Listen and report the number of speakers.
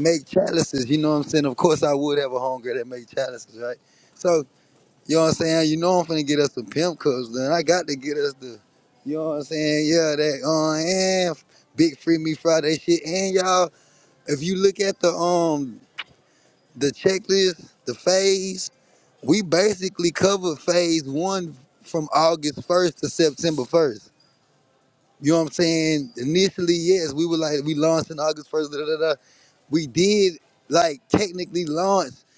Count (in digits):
1